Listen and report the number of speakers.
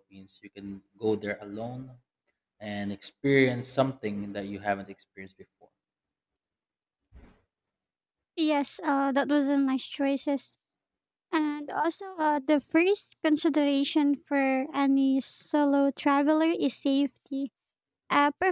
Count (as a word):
two